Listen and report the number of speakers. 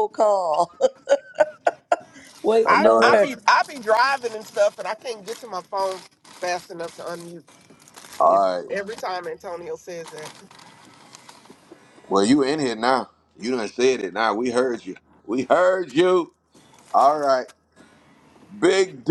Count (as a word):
three